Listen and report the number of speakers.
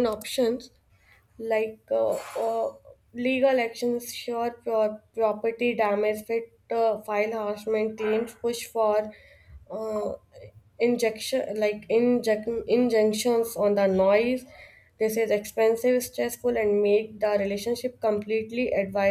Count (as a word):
one